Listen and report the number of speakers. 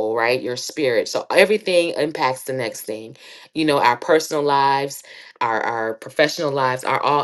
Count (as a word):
one